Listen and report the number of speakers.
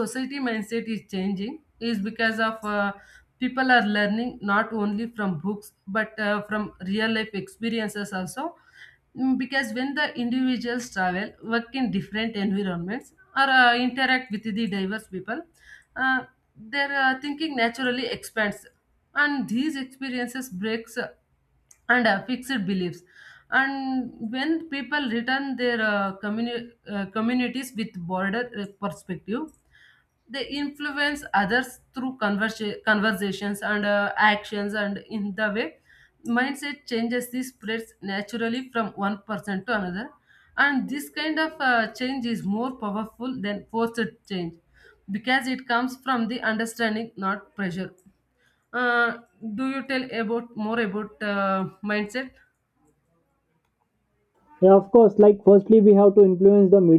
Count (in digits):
2